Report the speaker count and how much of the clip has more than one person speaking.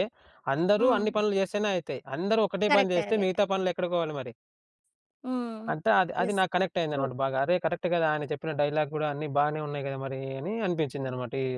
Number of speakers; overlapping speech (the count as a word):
two, about 12%